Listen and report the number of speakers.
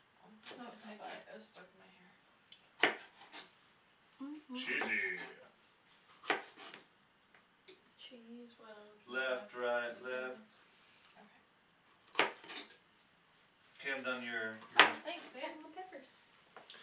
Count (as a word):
three